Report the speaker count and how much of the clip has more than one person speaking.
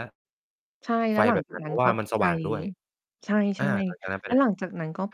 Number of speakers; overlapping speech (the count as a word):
two, about 30%